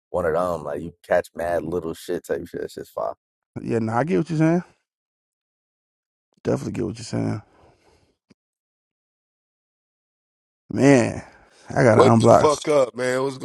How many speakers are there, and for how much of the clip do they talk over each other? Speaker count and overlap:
3, about 5%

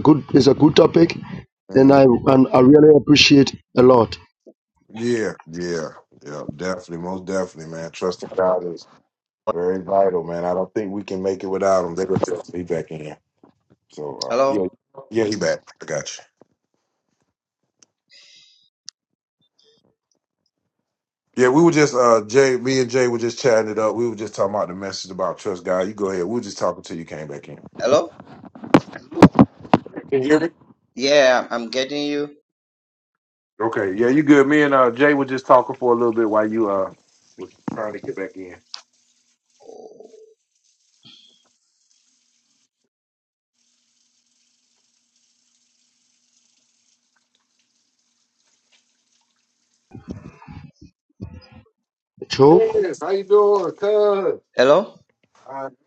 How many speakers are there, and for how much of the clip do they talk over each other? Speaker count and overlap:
3, about 1%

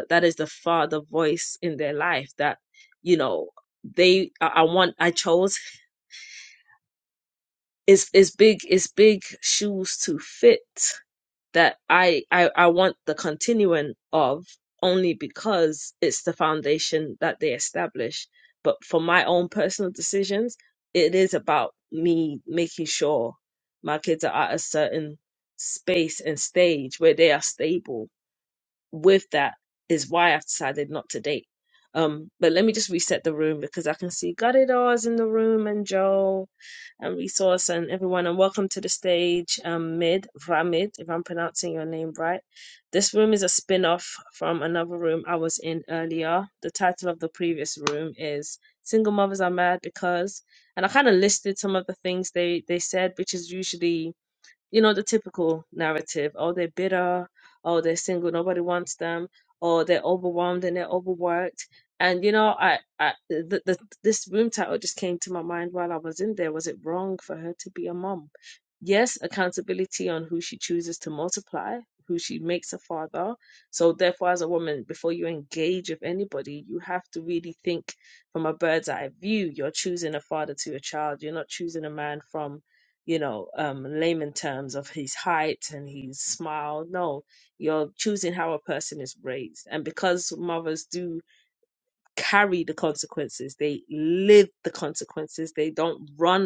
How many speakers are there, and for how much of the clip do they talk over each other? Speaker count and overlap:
1, no overlap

